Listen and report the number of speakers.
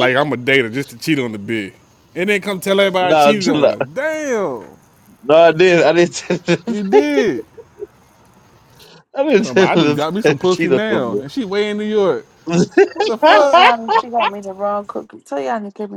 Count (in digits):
3